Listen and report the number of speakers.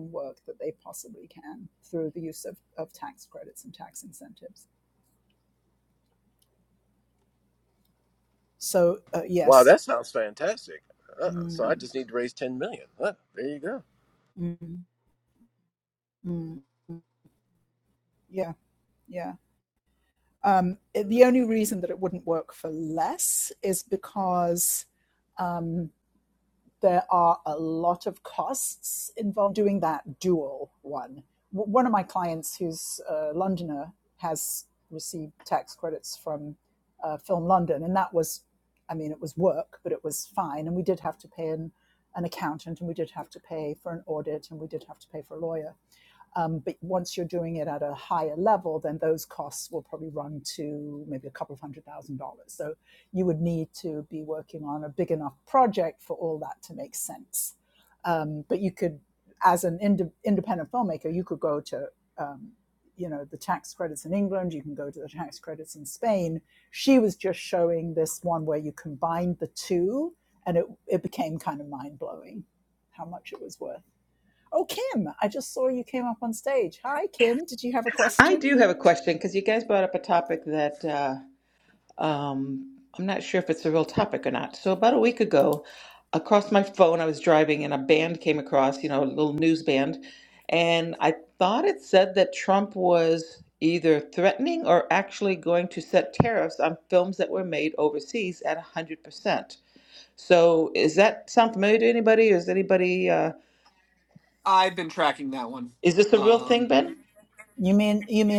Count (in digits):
4